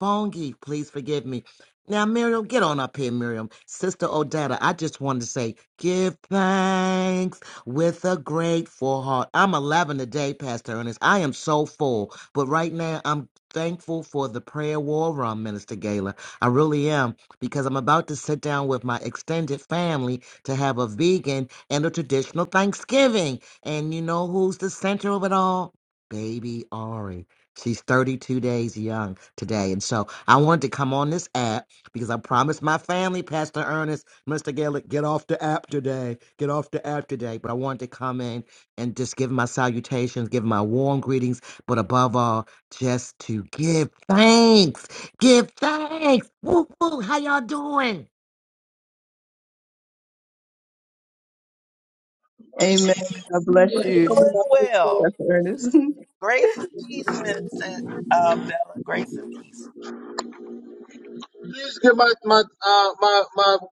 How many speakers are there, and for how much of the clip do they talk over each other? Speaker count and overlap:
four, about 1%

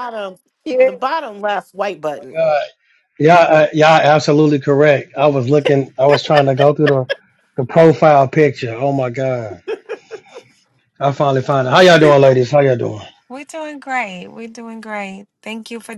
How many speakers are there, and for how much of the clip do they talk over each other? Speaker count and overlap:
three, about 1%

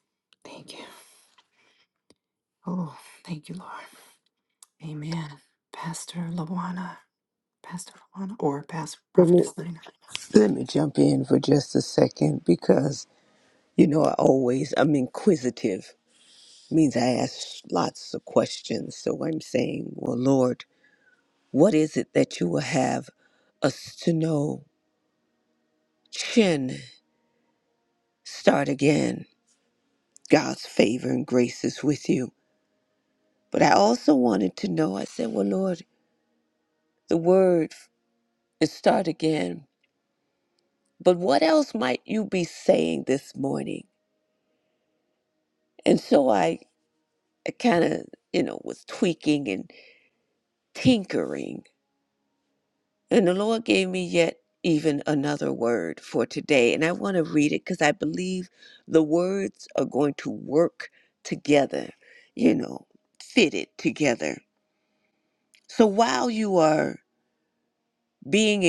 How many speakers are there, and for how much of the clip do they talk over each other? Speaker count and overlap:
two, under 1%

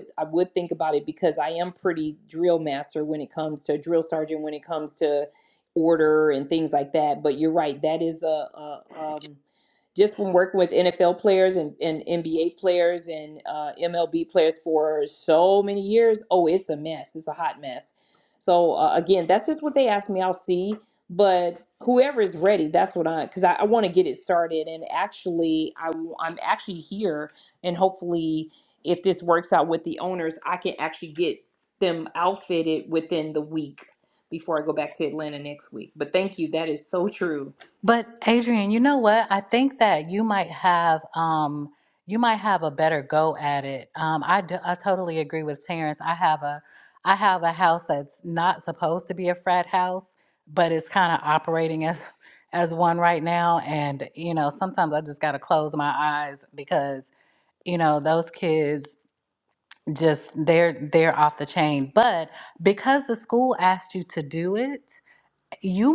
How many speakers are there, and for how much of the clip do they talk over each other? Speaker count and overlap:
two, no overlap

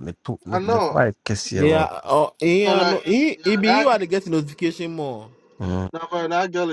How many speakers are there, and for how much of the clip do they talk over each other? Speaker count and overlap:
three, about 26%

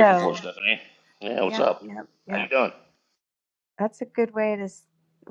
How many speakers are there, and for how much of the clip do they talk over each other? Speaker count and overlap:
two, about 18%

